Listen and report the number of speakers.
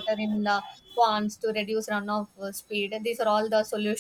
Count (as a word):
one